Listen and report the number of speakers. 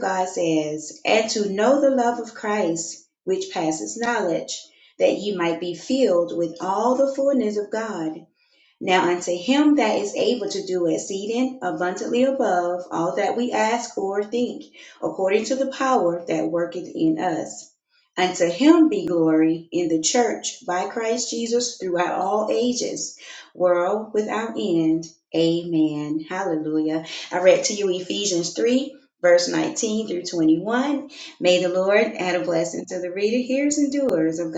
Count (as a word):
one